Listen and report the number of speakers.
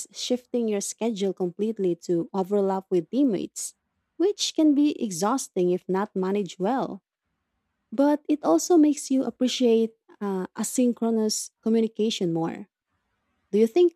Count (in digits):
1